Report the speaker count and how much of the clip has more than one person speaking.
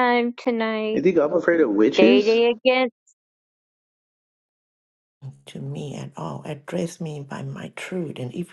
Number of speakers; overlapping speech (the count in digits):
3, about 6%